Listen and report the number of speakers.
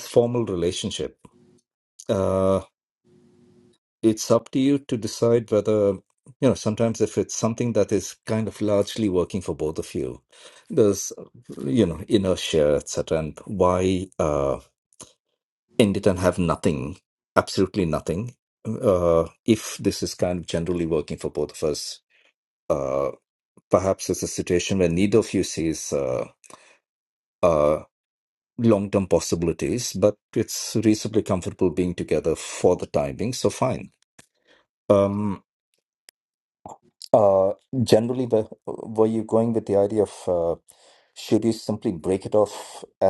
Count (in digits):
1